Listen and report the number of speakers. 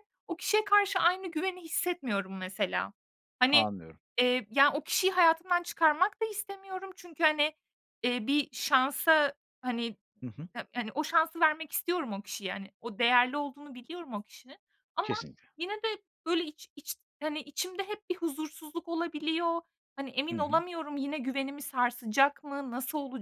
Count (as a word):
two